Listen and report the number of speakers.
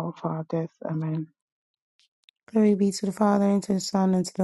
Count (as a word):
two